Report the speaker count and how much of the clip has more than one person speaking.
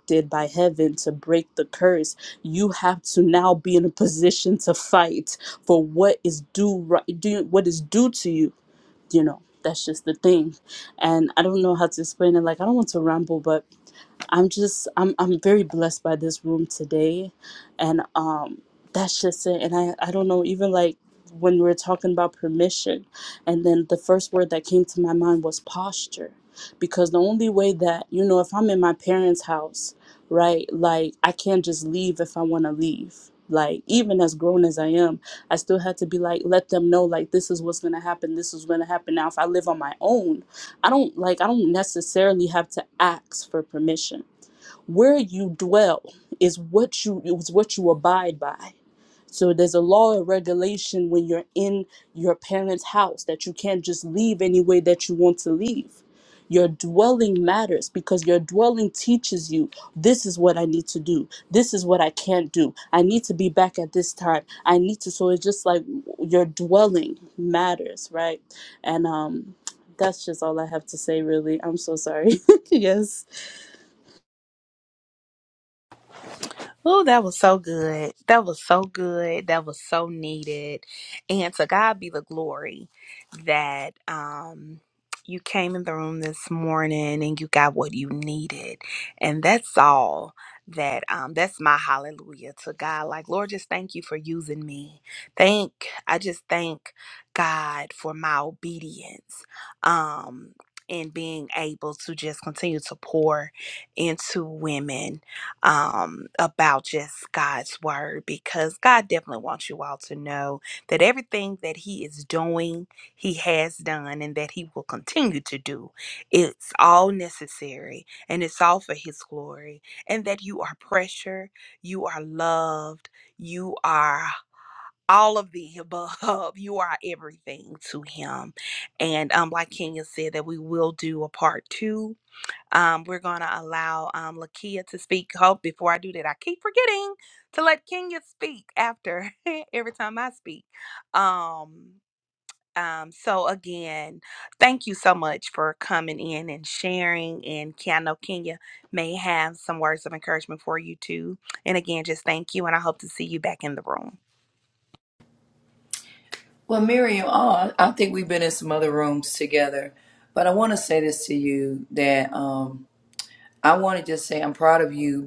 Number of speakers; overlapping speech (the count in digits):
3, no overlap